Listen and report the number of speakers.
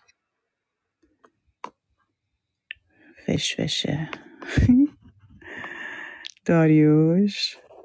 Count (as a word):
one